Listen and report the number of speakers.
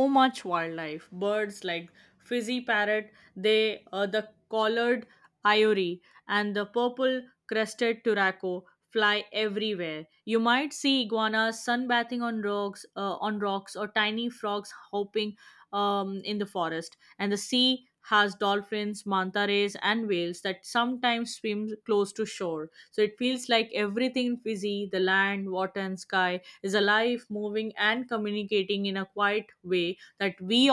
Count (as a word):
one